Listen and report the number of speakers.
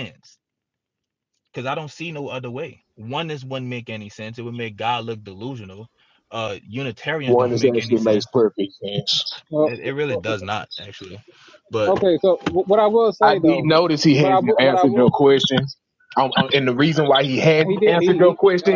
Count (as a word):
three